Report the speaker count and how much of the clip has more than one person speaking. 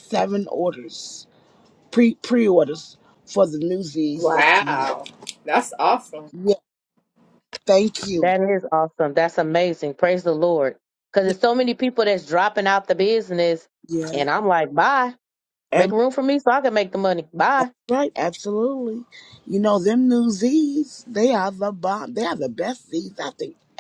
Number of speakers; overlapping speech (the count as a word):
three, about 5%